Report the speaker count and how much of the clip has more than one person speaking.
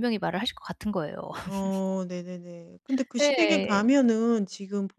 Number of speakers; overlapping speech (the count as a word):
two, about 14%